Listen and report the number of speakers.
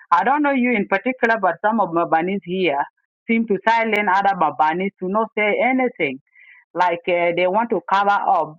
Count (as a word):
one